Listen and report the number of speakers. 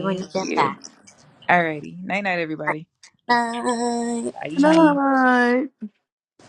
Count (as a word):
three